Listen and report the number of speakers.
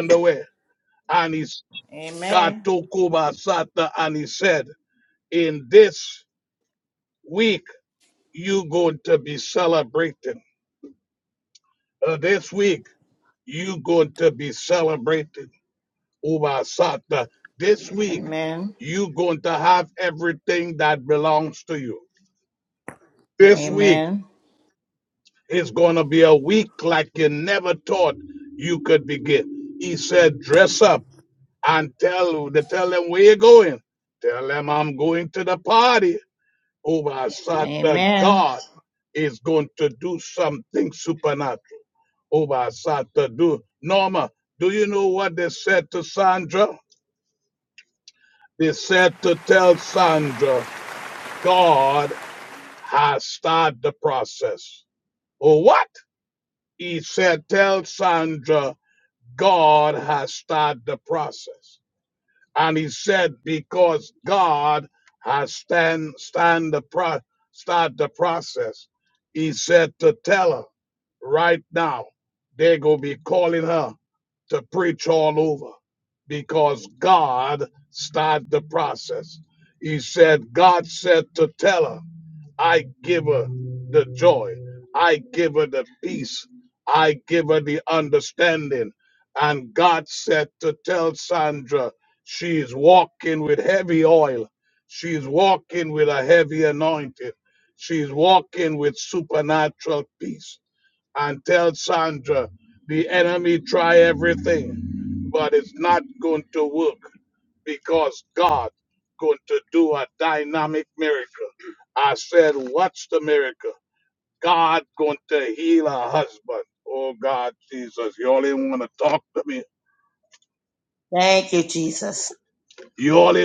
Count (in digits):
3